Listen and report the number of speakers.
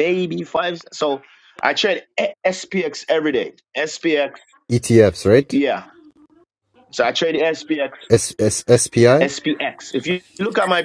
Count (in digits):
2